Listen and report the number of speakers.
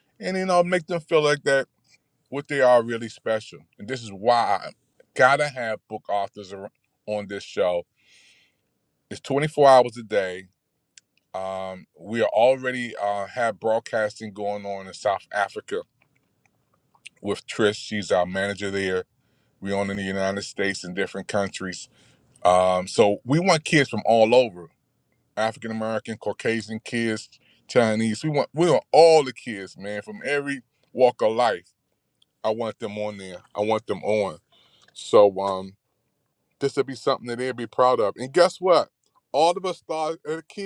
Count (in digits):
1